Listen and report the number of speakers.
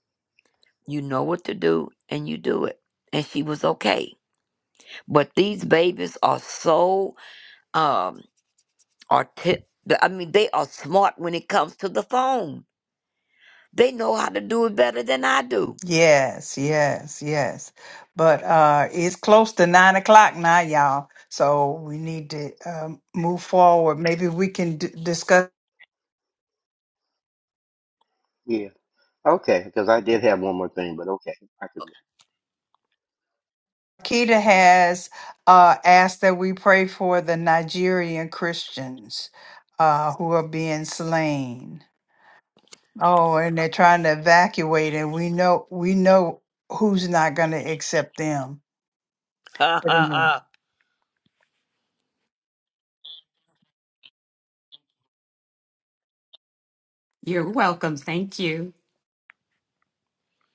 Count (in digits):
4